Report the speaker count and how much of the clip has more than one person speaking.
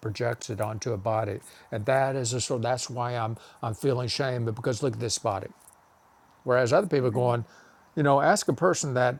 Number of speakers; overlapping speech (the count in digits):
1, no overlap